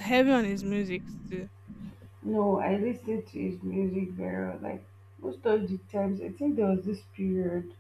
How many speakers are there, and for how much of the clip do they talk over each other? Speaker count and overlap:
two, no overlap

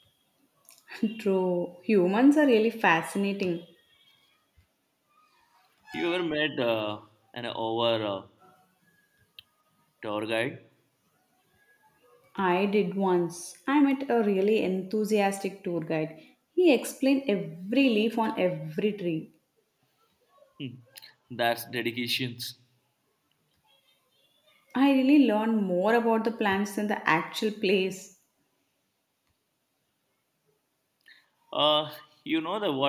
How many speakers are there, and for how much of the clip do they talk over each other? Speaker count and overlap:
two, no overlap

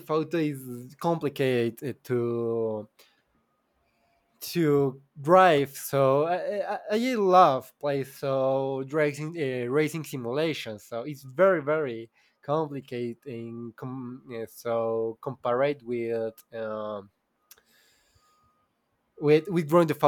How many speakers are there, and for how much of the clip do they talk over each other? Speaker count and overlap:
one, no overlap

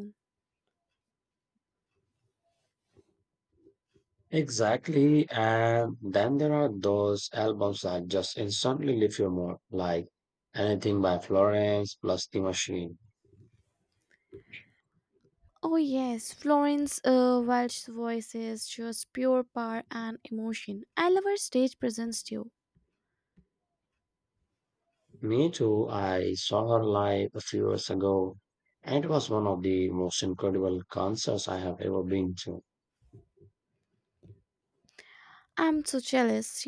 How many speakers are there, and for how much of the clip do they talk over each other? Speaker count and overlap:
two, no overlap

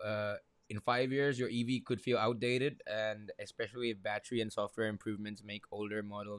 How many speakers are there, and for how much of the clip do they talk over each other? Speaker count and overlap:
one, no overlap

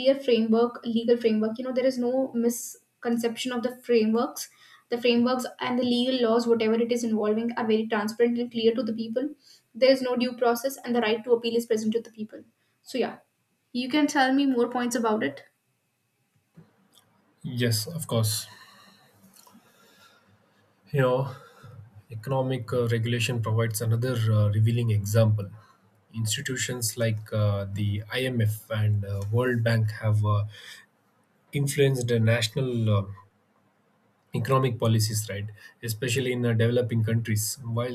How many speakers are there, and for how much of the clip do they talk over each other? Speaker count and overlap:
two, no overlap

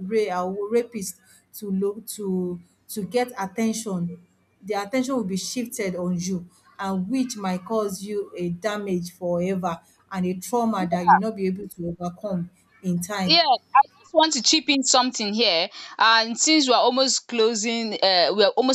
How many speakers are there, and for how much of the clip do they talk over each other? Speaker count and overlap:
two, about 1%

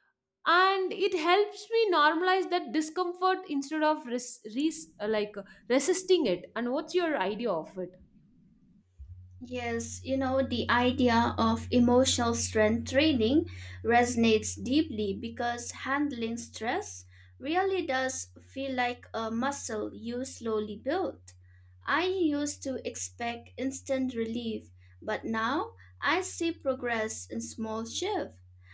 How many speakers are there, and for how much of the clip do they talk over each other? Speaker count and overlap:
two, no overlap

